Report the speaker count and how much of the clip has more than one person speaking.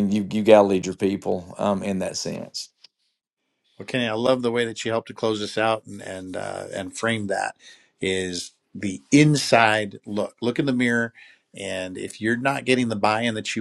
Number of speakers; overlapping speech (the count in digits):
2, no overlap